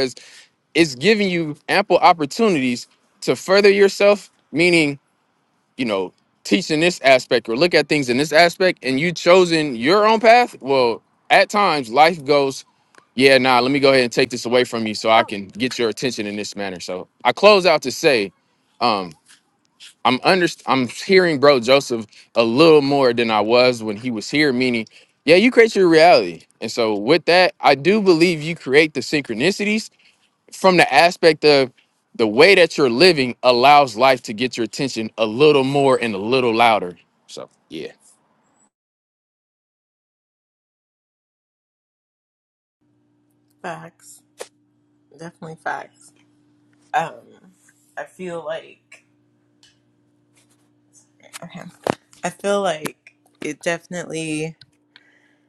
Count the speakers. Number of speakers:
two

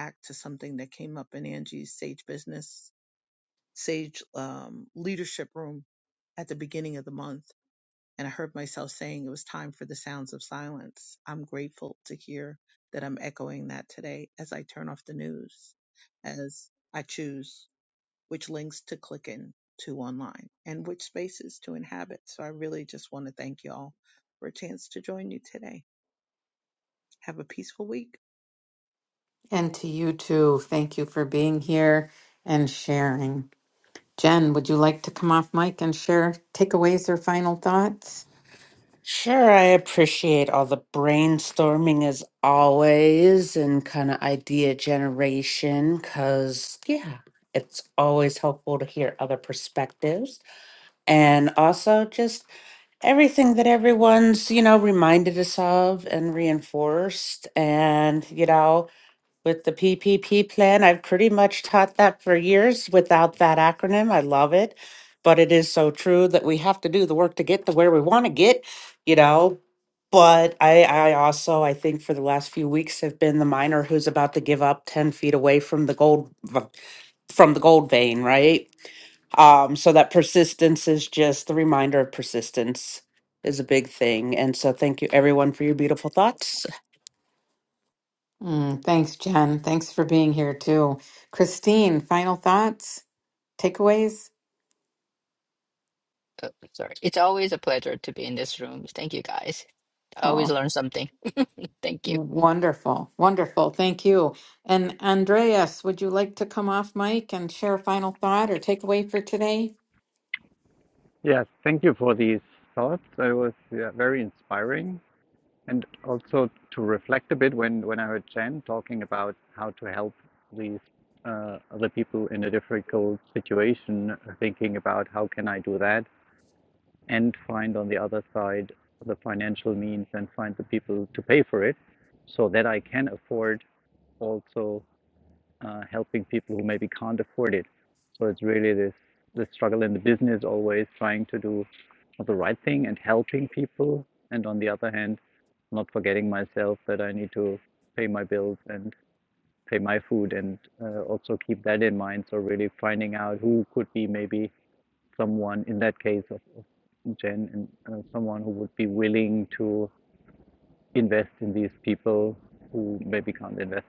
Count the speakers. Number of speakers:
five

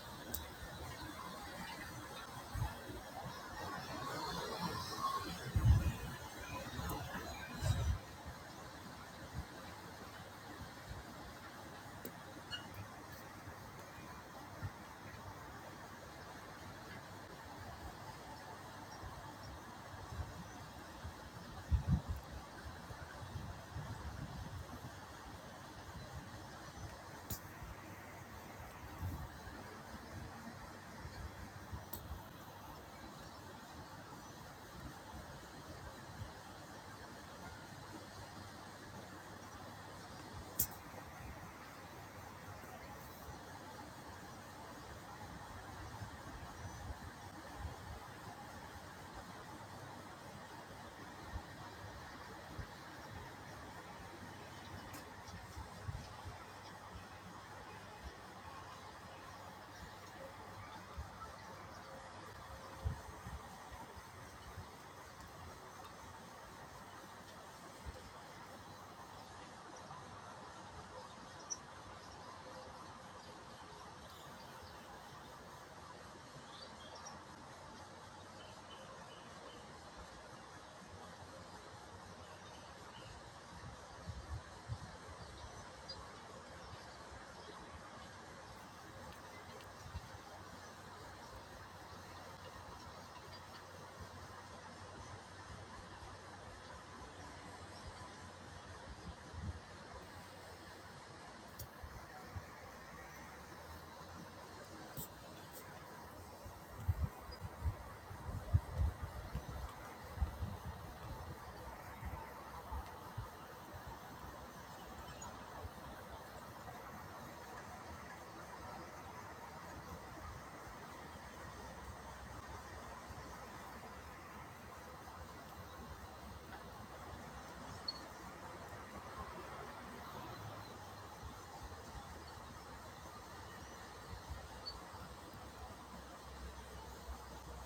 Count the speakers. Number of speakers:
zero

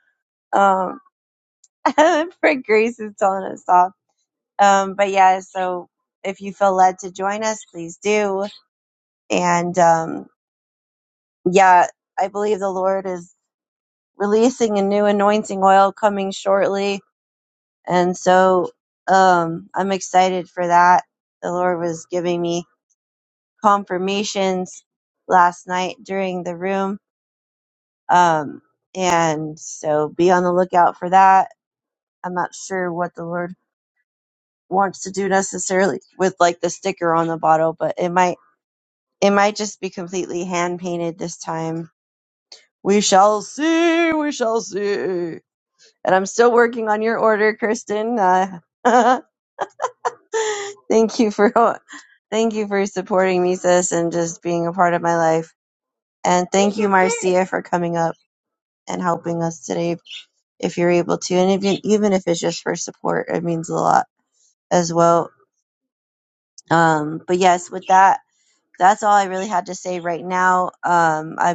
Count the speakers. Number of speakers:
one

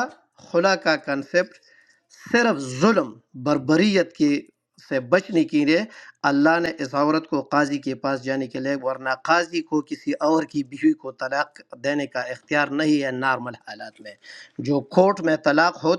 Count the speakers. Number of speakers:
one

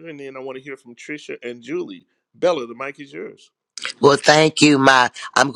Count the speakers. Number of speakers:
two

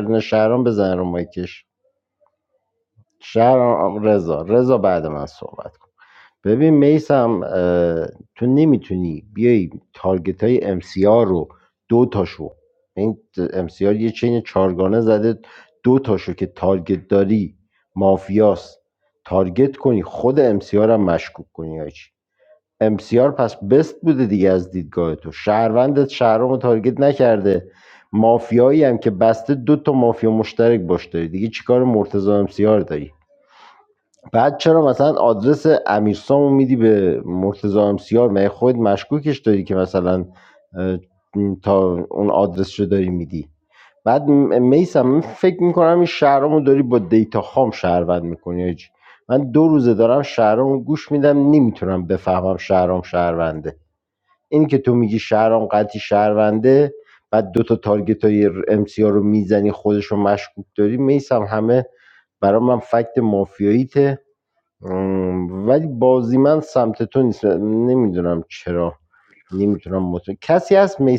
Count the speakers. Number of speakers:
one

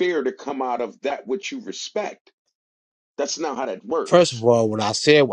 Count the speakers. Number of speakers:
two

